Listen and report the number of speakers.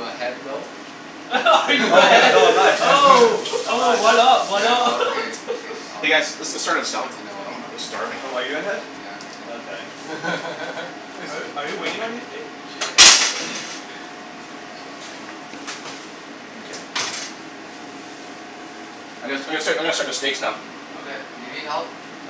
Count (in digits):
4